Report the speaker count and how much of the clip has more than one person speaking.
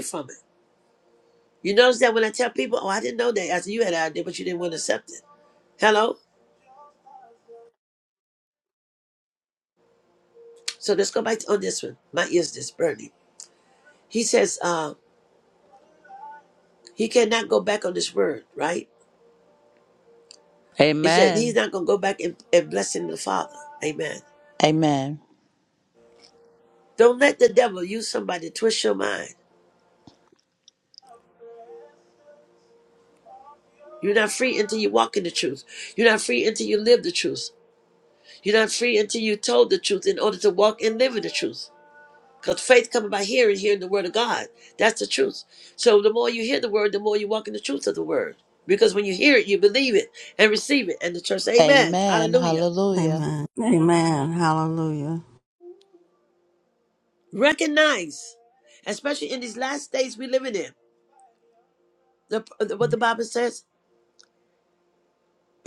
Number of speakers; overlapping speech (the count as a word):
three, about 3%